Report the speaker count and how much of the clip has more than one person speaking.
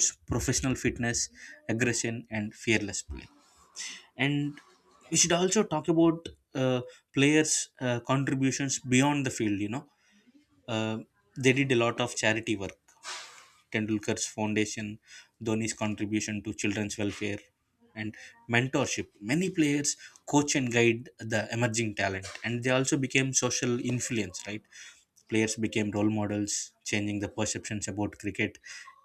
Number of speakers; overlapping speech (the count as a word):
one, no overlap